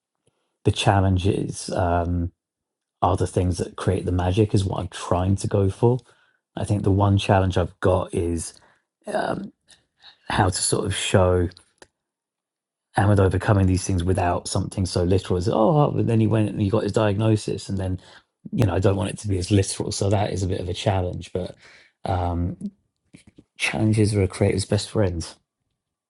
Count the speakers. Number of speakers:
1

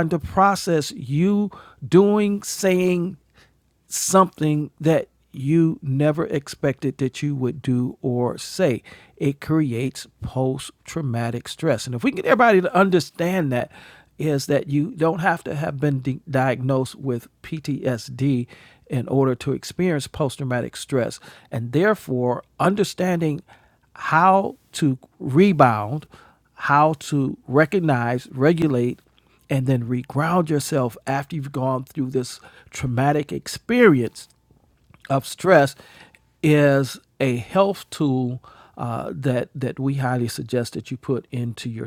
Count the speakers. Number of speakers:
1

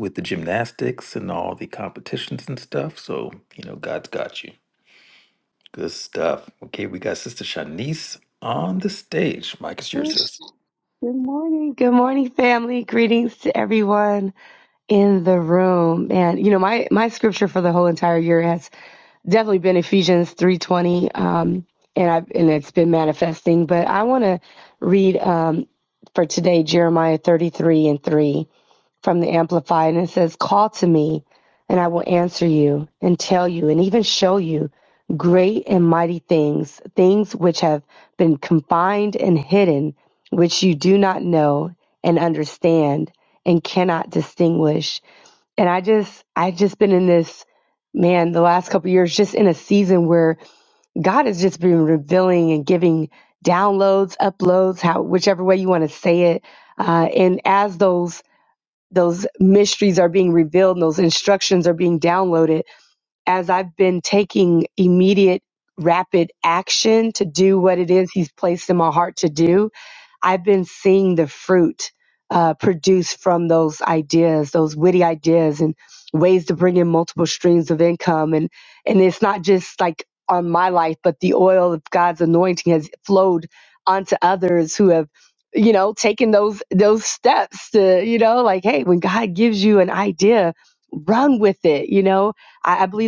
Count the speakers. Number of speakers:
2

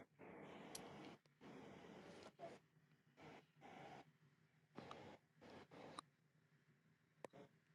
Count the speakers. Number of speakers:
0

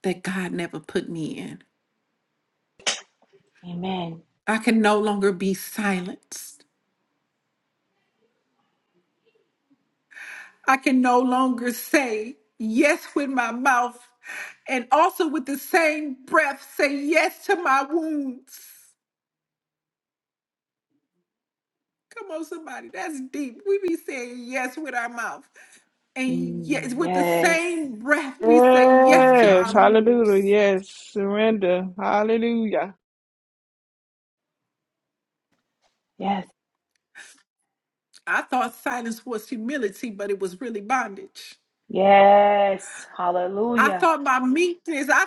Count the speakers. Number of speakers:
3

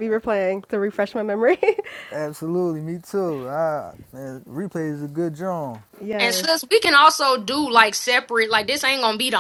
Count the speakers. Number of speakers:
3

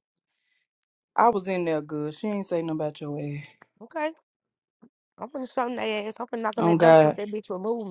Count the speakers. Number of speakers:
2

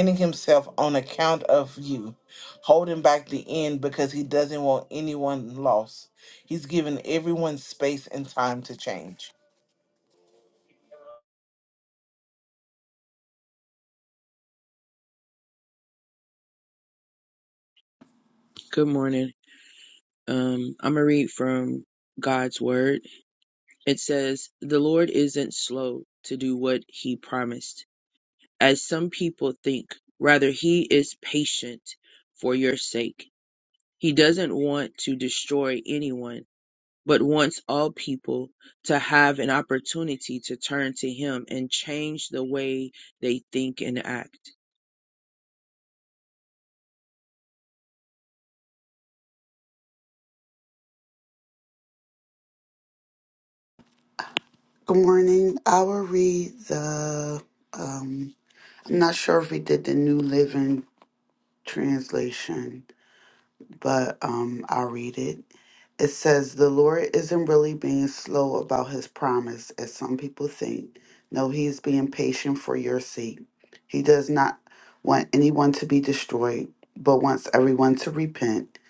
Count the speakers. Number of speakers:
3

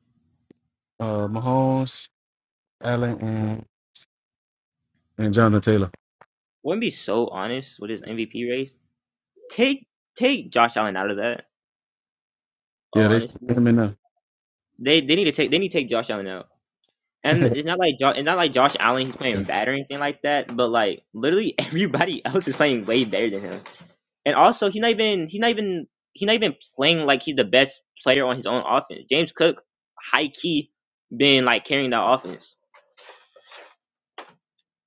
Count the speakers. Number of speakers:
2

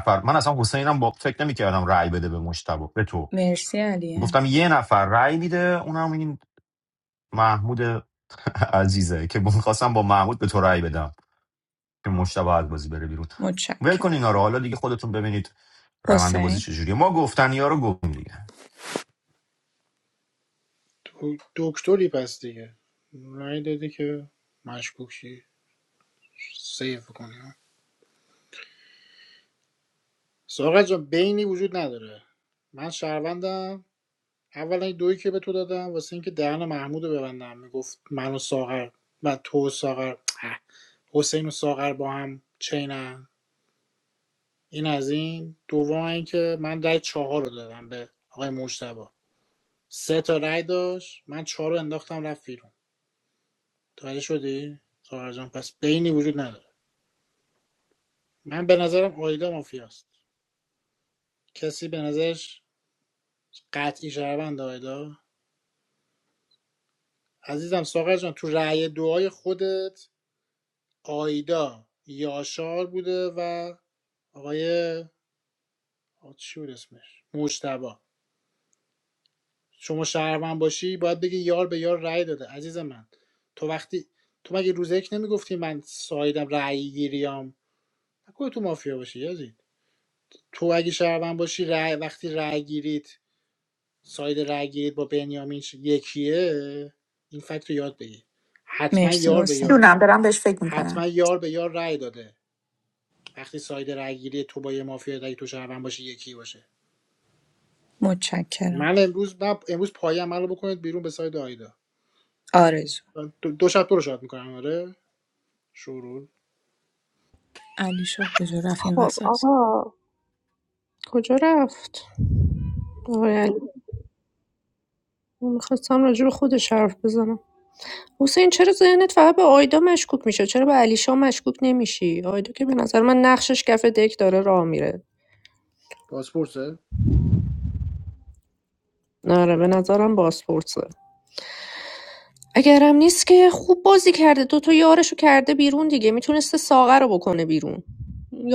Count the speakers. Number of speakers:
5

